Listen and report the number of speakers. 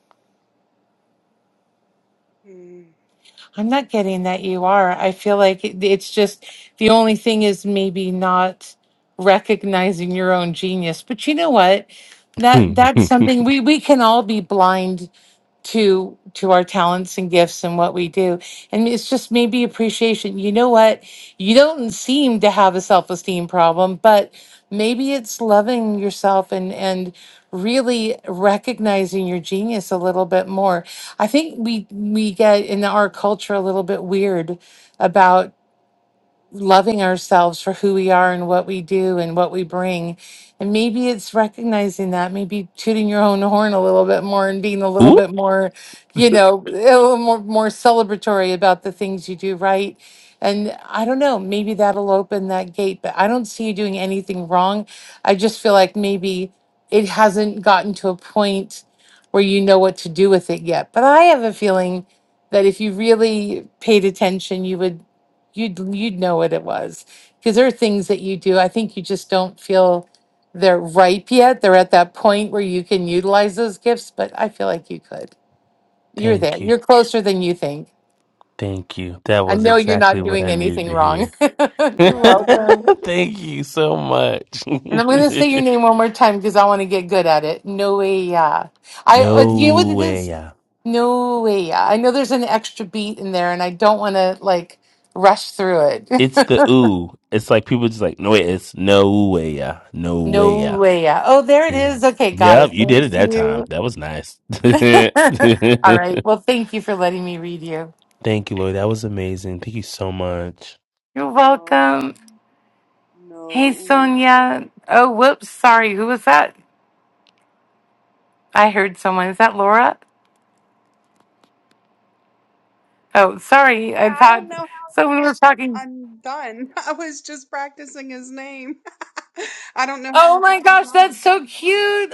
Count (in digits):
3